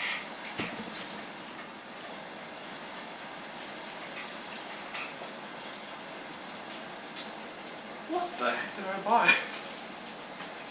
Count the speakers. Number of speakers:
one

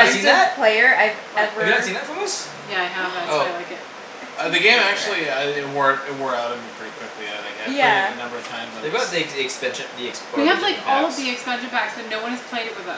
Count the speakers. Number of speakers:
four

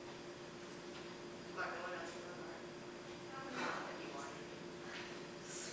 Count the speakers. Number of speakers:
one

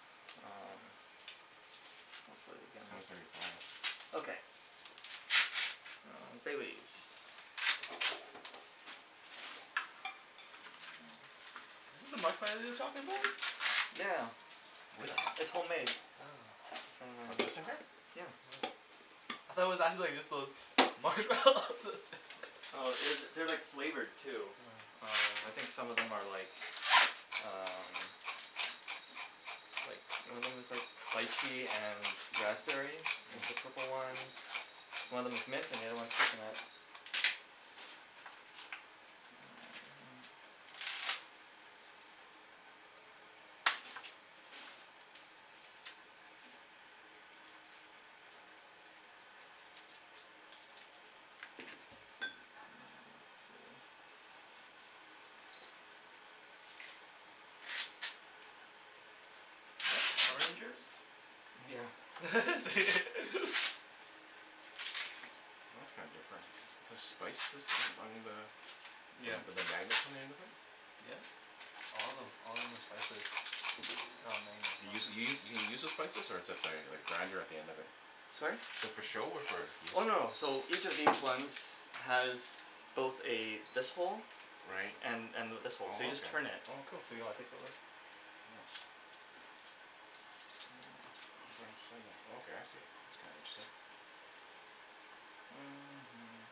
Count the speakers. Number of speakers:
three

